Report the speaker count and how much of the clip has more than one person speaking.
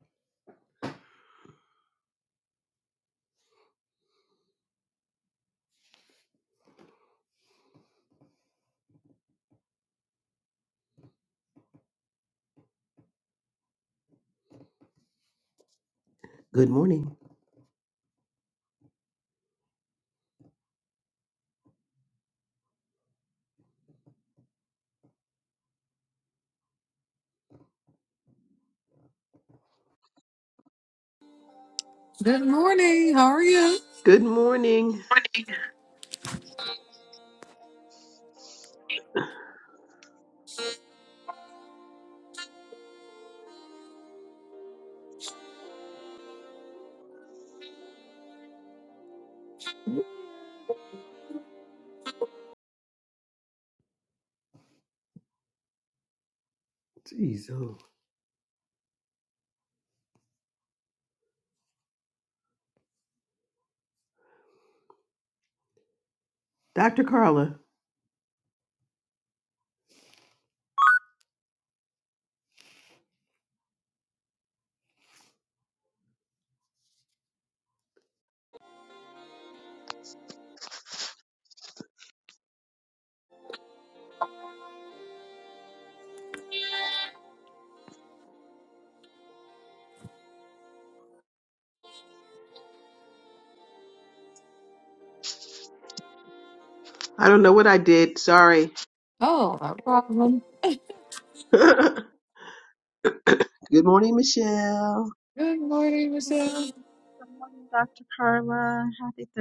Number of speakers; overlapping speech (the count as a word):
three, under 1%